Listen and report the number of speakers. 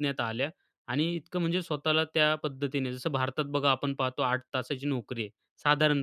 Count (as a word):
one